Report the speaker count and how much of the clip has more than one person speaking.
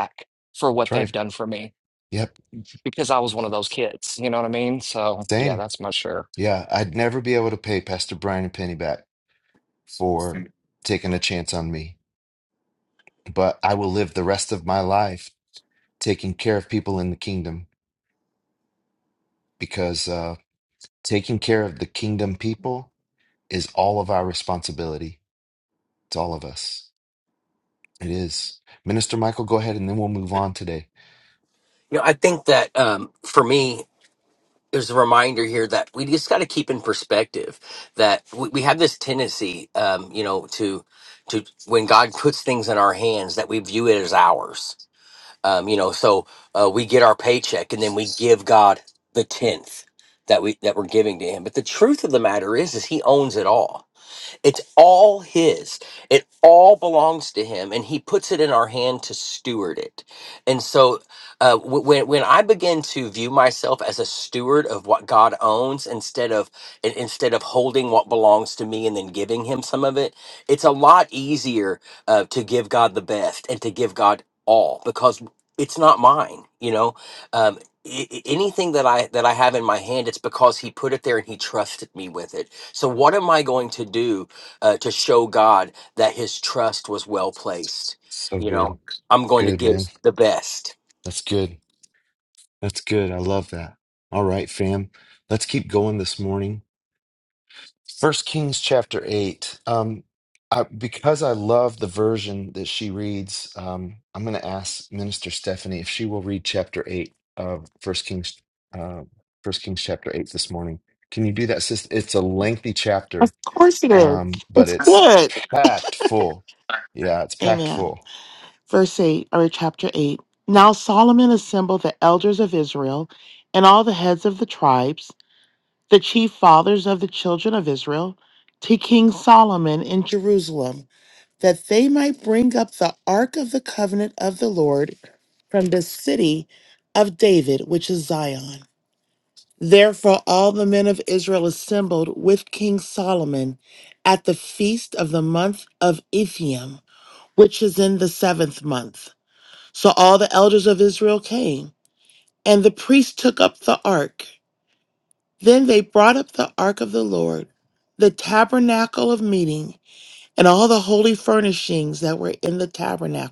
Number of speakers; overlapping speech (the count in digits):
4, about 2%